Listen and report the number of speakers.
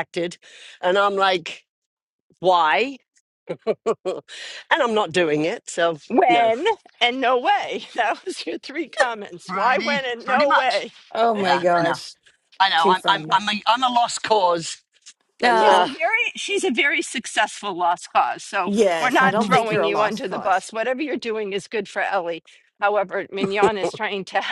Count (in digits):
3